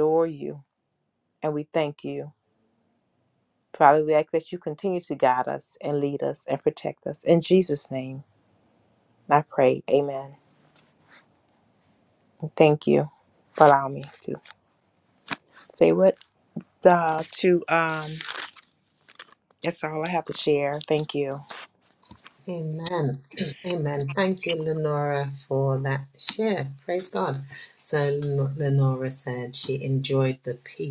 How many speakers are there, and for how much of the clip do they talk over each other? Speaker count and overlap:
2, no overlap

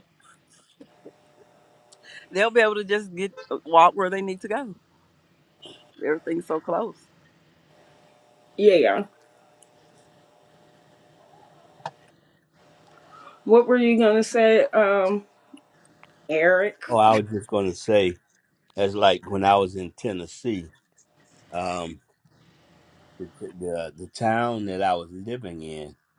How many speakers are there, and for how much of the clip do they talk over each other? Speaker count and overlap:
3, no overlap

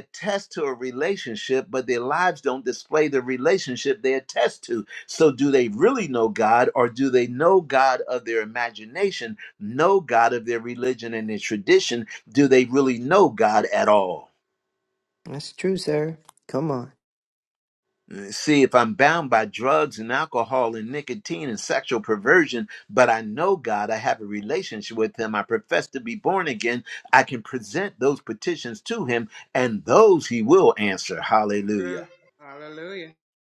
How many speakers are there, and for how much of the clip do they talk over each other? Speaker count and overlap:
3, about 1%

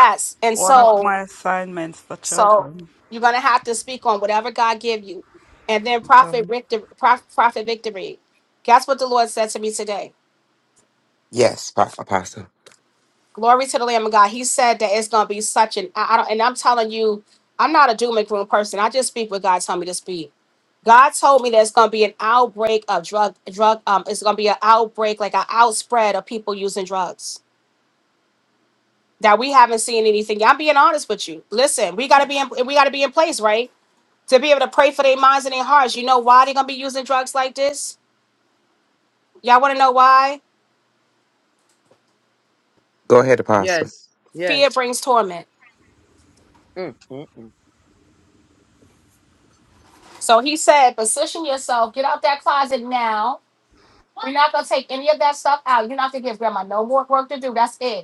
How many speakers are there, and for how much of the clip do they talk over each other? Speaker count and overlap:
4, about 3%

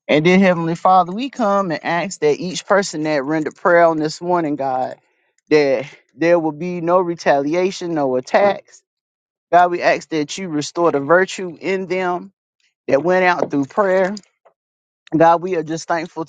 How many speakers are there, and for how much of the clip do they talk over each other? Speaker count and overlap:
1, no overlap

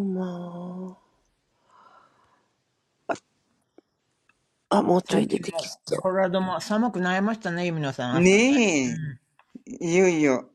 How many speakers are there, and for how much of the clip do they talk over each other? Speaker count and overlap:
3, about 9%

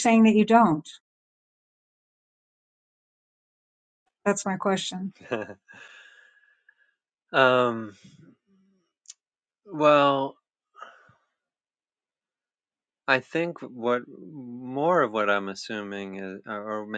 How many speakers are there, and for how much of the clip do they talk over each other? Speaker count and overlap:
2, no overlap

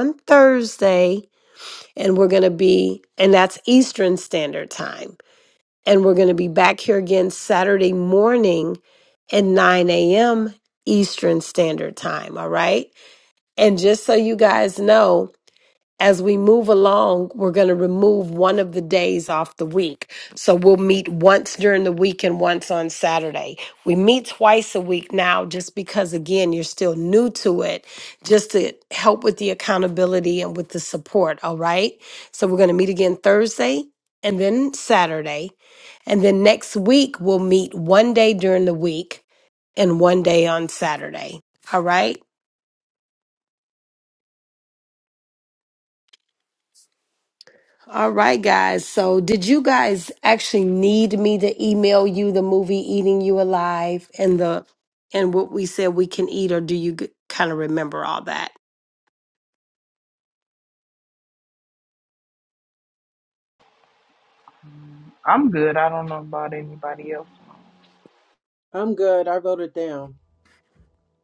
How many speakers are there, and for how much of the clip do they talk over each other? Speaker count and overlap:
3, no overlap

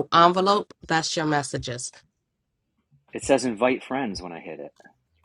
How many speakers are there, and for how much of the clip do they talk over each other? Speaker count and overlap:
2, no overlap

